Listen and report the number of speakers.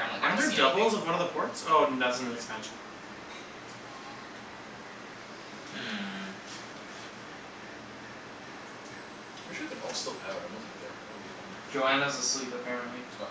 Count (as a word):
four